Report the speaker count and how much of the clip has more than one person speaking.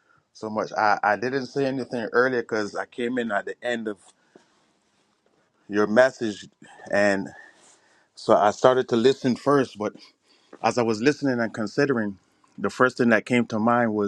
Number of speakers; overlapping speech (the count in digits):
1, no overlap